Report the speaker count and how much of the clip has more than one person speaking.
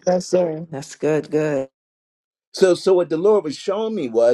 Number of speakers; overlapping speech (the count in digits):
2, no overlap